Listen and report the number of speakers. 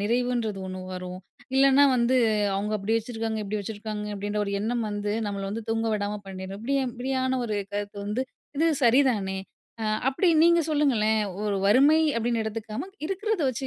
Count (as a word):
one